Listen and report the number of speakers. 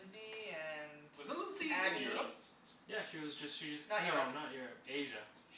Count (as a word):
three